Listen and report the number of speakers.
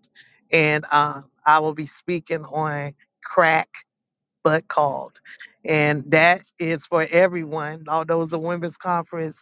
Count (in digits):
1